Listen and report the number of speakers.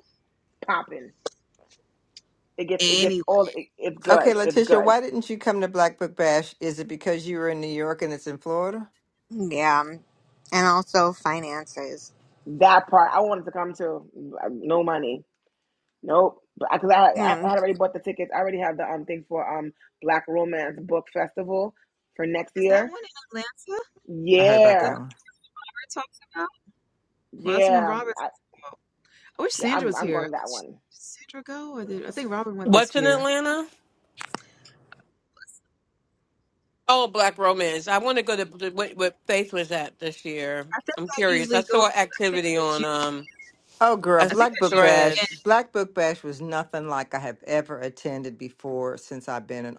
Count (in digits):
5